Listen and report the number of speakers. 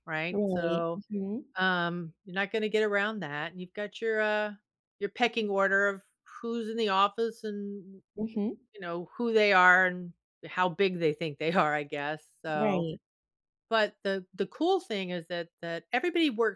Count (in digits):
2